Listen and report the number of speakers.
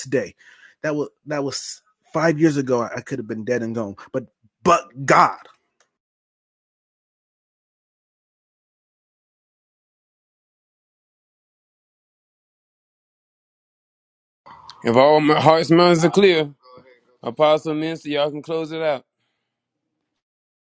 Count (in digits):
2